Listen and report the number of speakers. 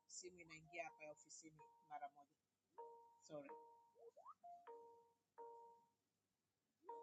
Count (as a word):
zero